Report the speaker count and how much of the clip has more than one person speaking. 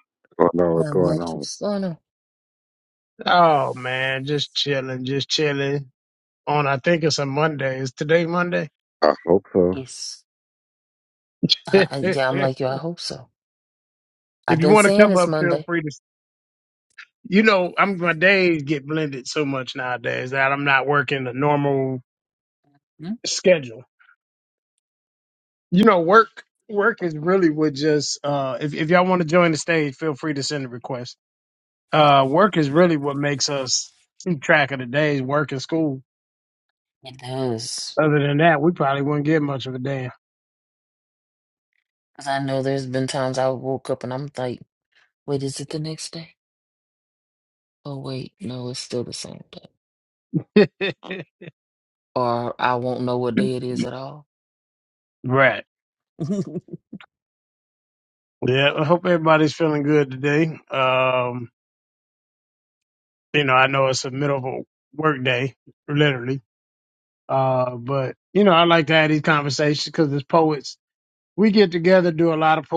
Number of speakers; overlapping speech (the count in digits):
3, about 3%